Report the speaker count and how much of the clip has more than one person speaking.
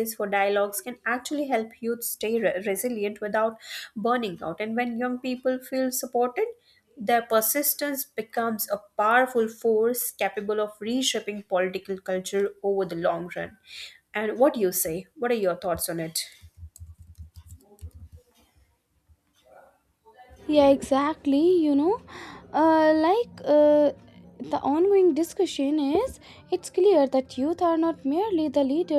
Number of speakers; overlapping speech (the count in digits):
2, no overlap